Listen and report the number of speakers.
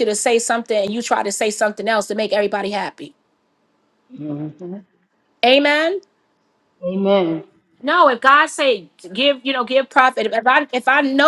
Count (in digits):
2